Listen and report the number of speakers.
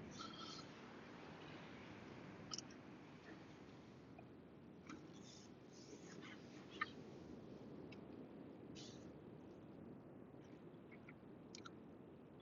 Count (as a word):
zero